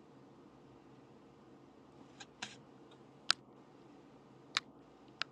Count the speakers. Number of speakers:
0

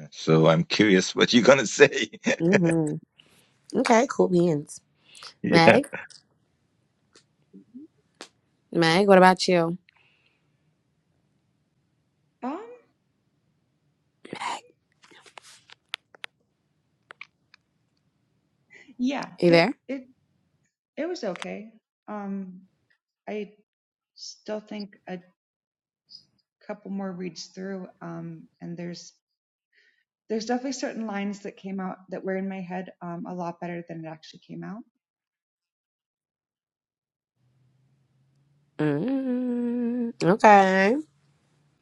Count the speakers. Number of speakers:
3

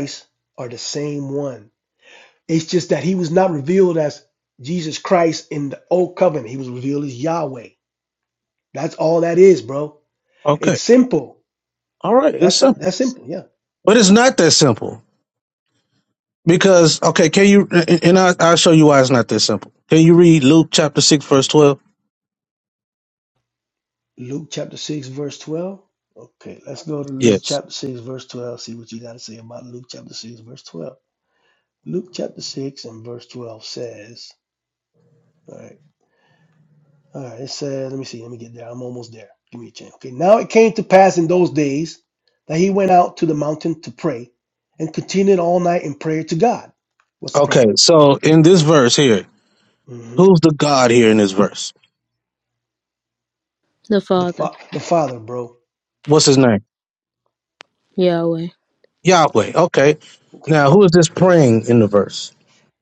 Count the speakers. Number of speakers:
3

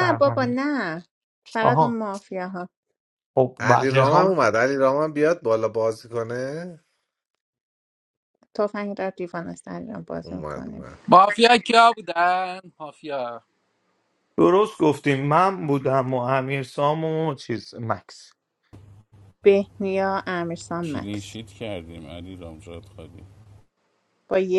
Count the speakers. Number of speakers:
5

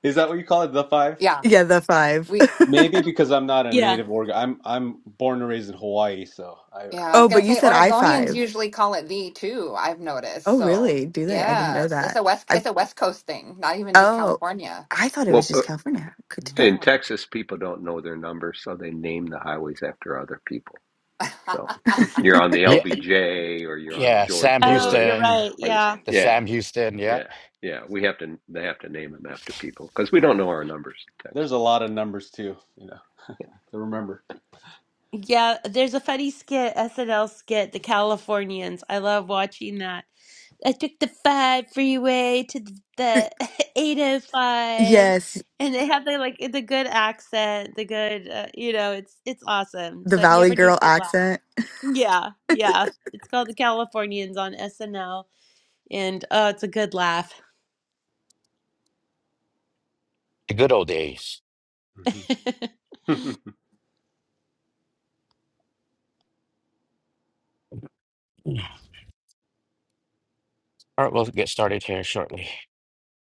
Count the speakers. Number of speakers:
6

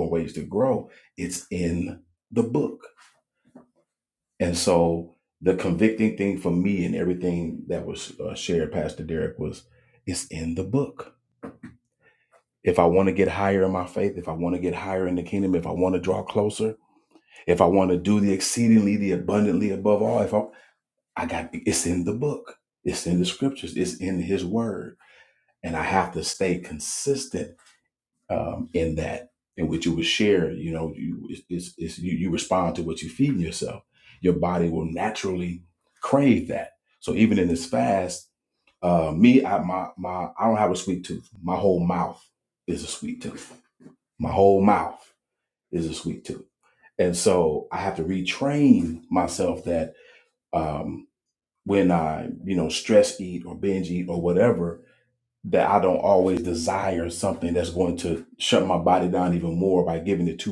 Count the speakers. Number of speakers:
1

